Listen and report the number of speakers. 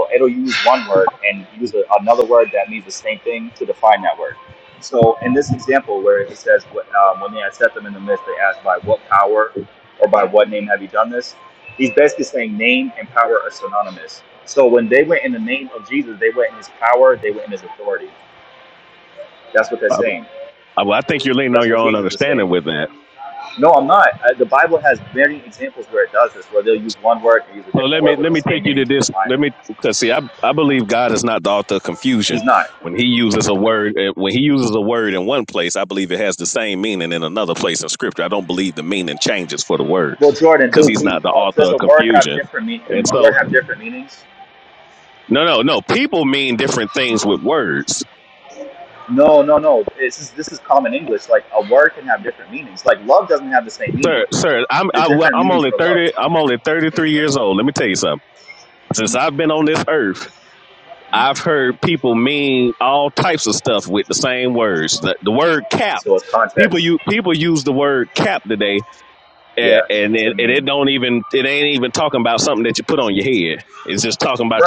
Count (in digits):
2